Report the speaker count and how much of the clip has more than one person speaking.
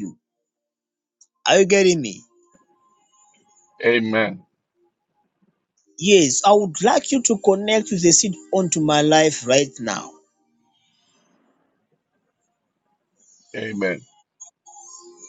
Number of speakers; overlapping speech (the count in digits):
2, no overlap